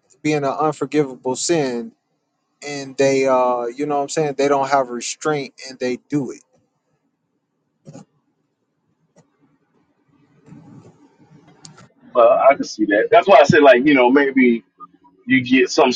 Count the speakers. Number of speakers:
two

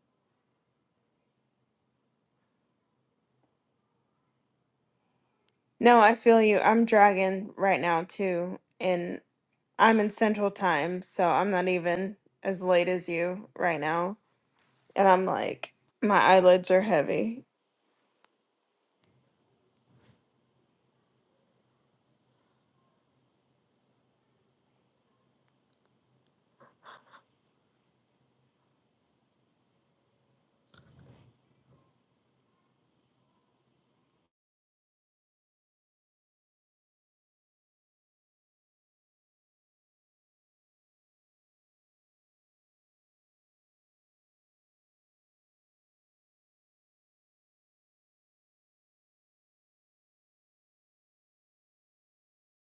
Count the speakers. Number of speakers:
one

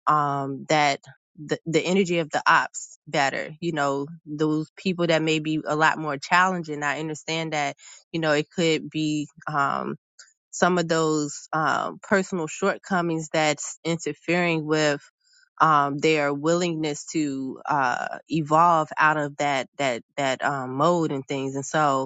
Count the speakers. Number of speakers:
one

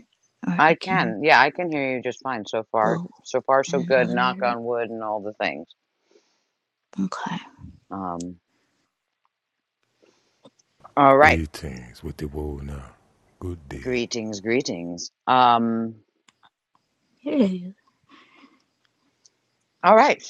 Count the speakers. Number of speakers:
three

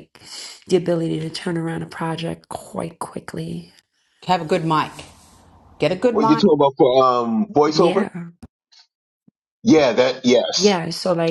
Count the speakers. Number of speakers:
three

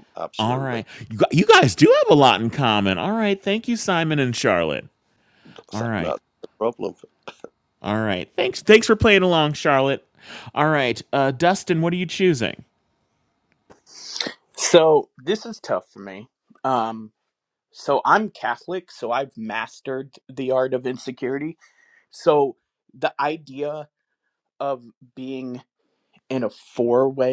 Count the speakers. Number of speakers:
three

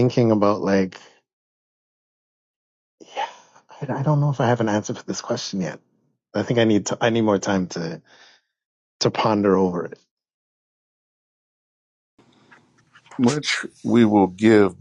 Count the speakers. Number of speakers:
two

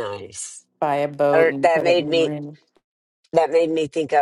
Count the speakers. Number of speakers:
two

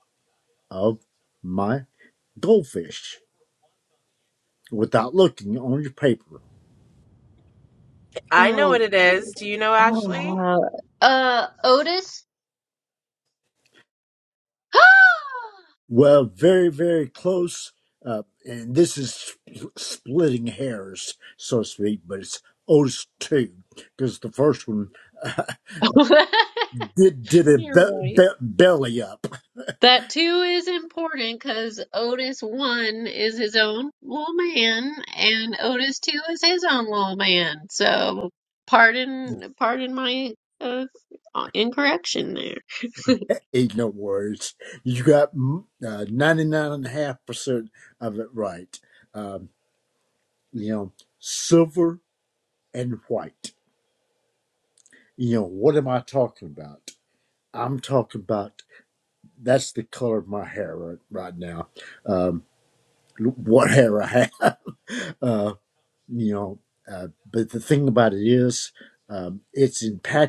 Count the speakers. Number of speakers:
three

